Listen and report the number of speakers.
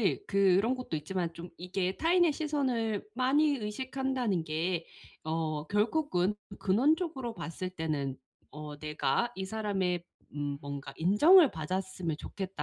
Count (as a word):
one